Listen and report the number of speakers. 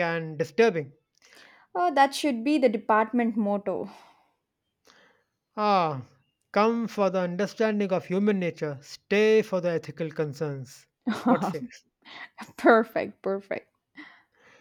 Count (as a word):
two